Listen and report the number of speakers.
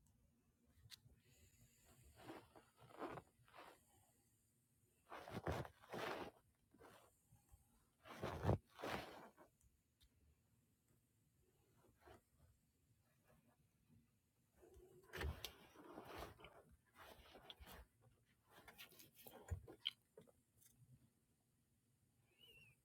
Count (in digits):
0